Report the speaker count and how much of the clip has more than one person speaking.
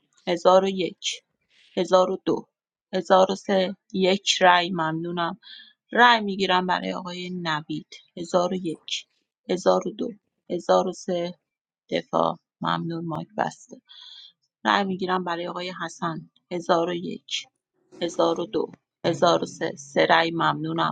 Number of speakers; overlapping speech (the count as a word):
one, no overlap